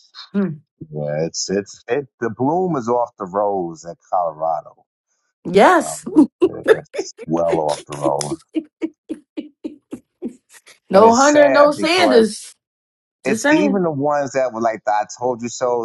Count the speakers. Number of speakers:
2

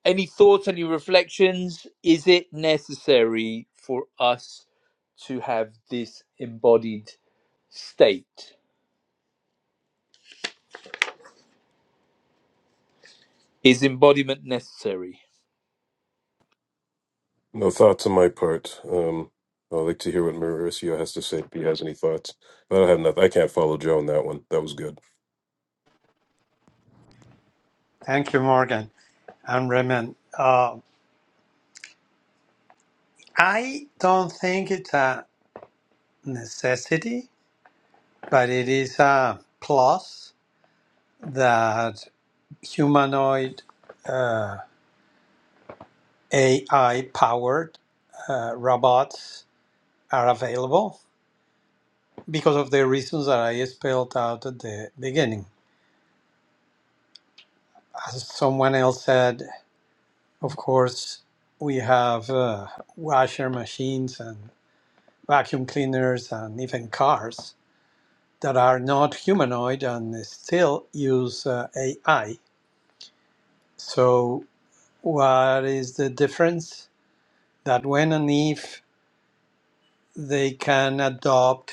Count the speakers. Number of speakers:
3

